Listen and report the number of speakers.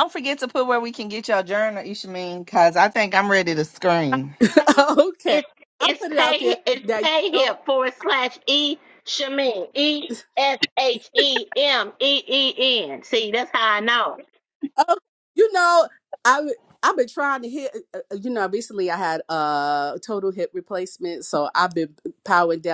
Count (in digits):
3